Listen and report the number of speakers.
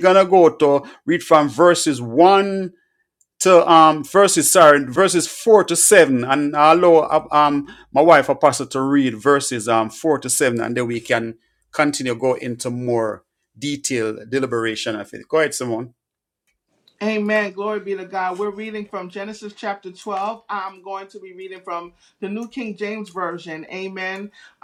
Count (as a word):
two